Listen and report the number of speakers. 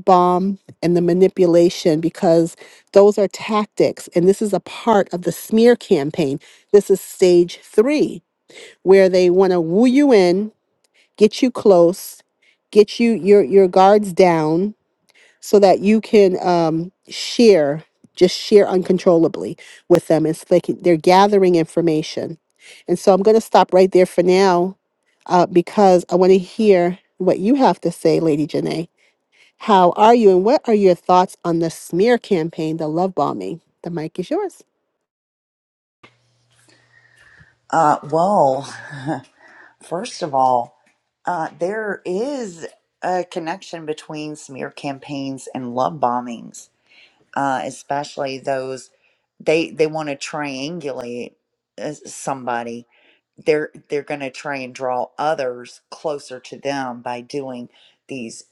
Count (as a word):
two